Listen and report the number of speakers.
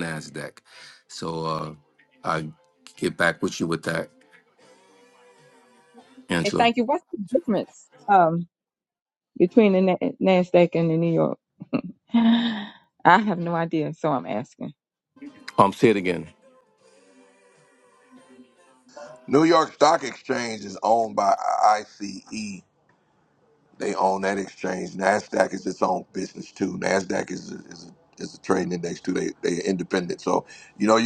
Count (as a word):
three